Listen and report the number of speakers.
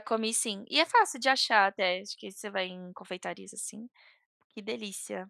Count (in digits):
1